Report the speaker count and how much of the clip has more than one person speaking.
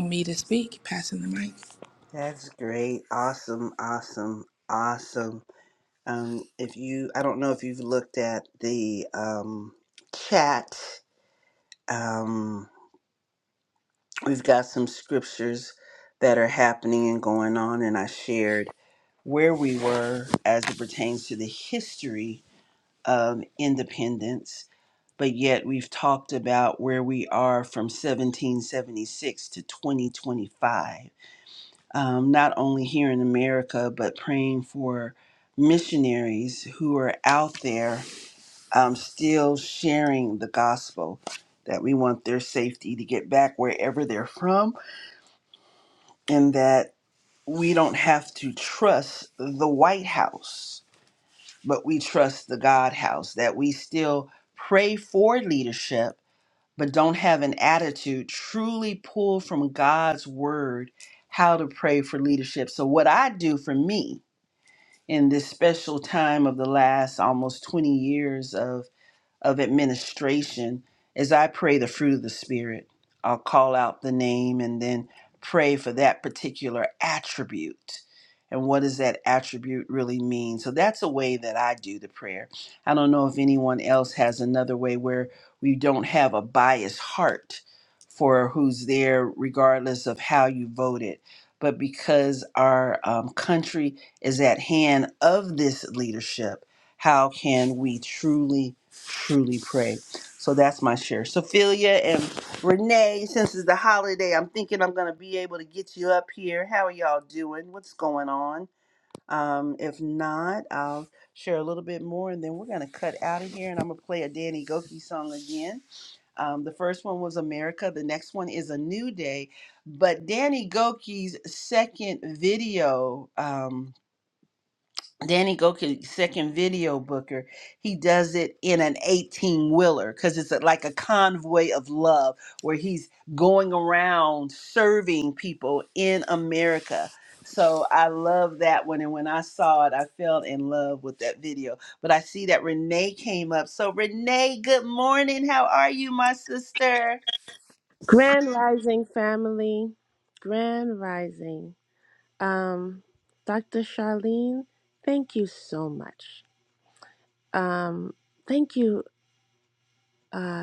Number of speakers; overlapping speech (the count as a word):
three, no overlap